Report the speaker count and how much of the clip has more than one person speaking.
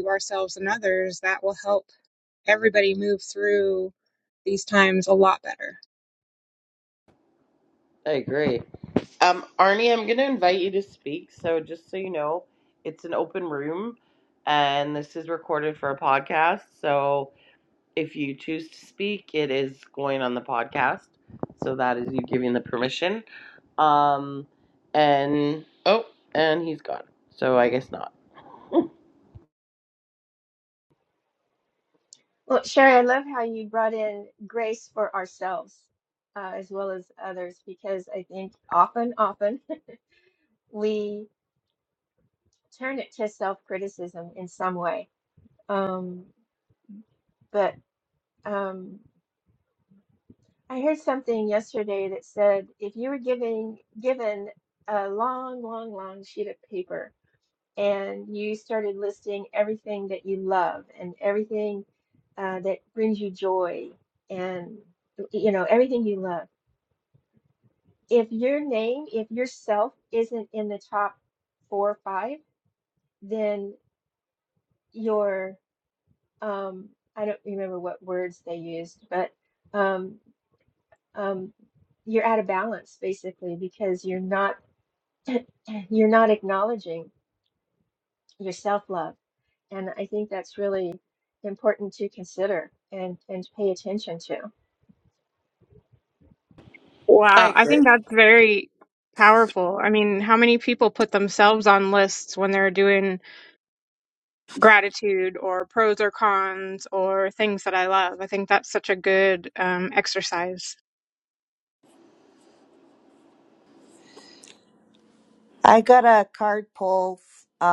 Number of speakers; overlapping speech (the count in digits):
4, under 1%